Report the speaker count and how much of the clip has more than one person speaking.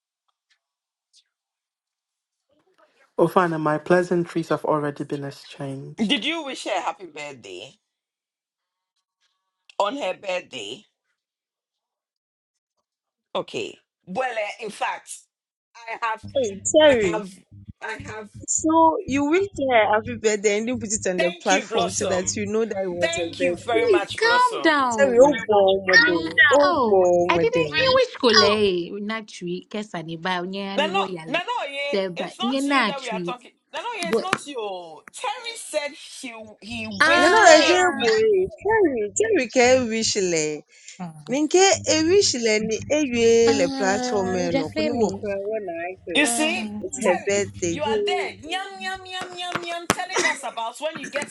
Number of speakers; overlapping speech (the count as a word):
four, about 25%